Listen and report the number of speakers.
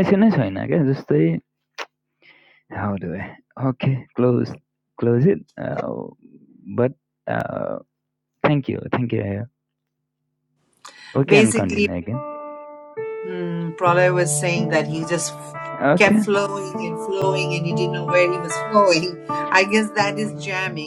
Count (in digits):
2